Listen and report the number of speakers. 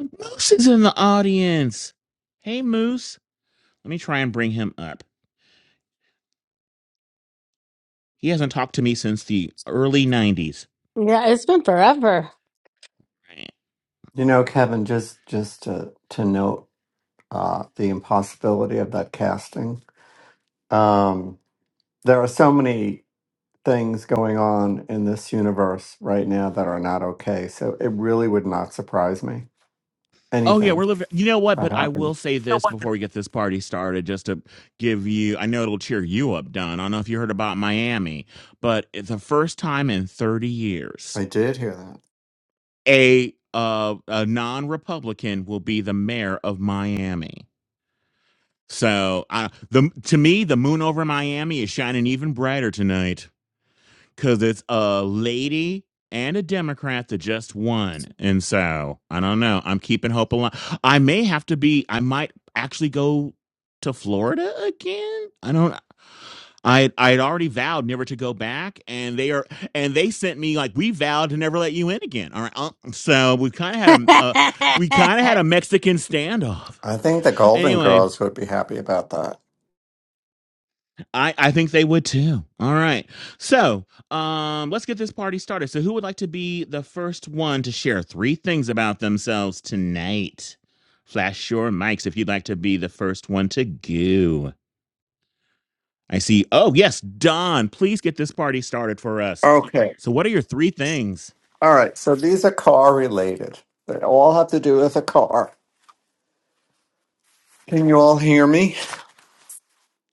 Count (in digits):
3